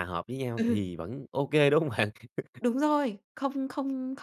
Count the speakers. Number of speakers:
two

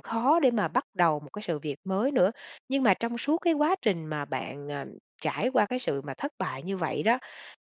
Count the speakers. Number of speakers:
one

